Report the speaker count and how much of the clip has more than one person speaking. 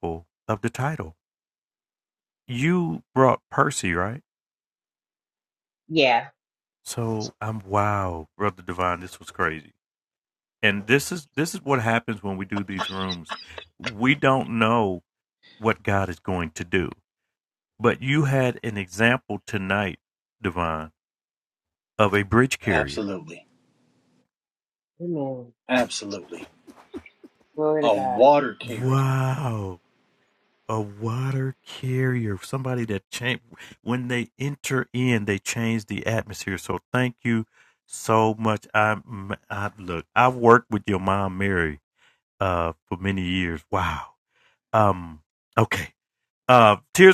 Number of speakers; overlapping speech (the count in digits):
3, about 2%